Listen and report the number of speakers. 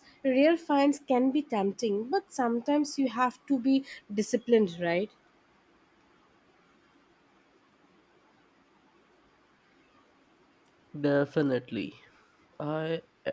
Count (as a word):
two